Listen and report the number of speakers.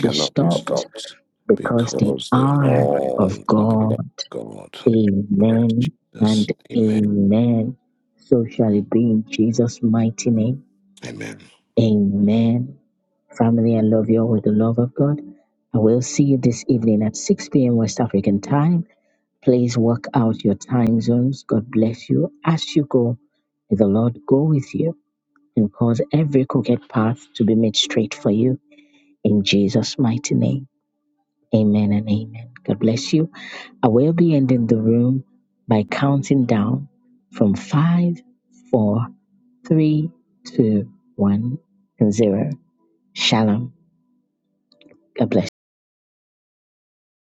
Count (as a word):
two